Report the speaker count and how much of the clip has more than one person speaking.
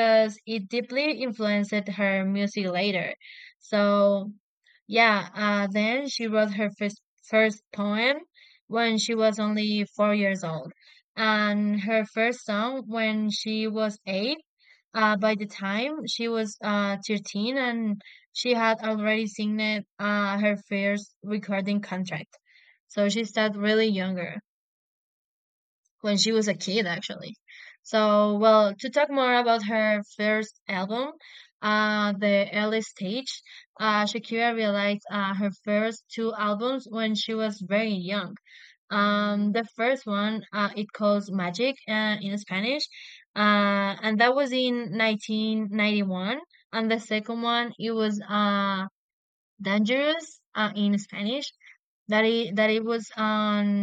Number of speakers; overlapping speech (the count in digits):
1, no overlap